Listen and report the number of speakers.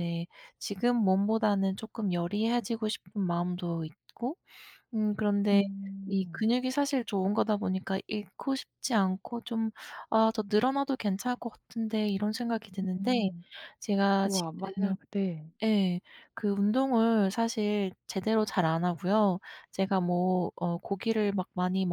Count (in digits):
2